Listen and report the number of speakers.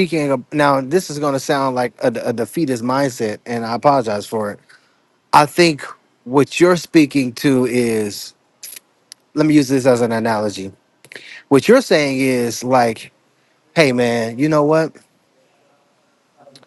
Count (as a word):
one